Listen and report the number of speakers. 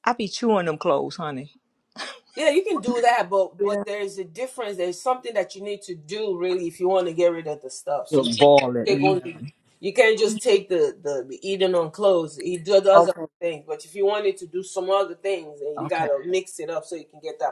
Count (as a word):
two